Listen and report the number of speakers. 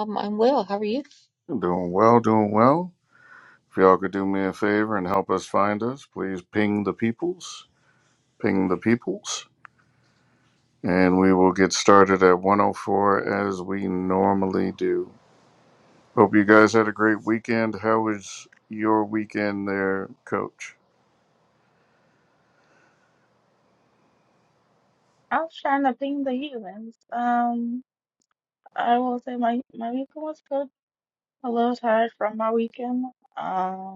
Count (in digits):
3